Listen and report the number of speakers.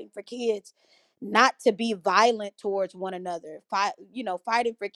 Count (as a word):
one